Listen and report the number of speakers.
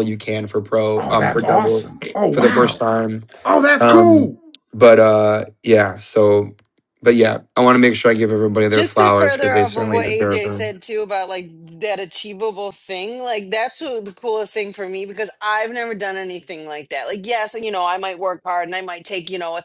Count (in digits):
3